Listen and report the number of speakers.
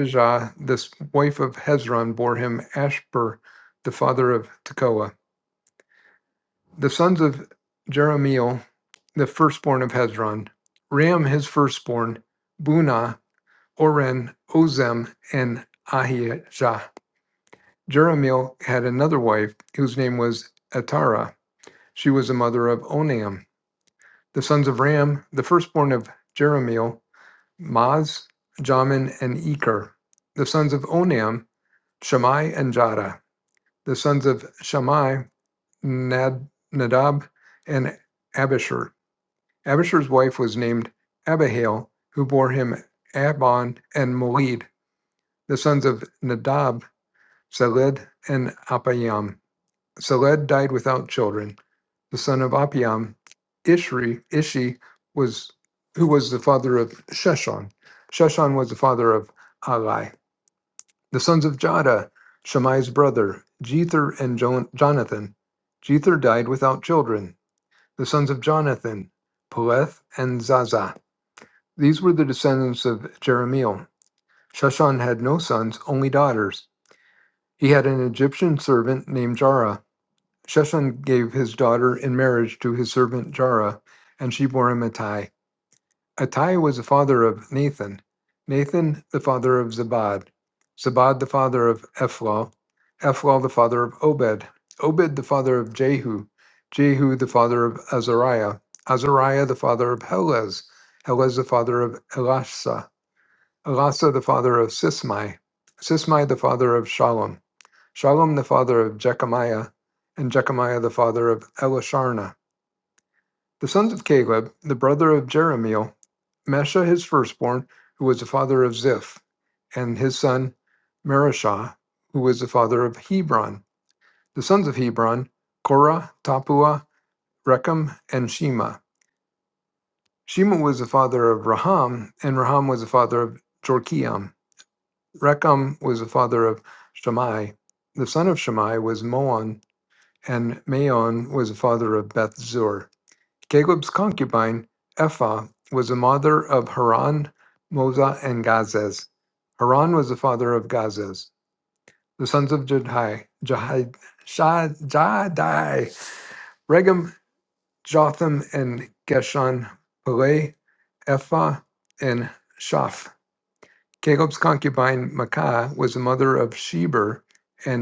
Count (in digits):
1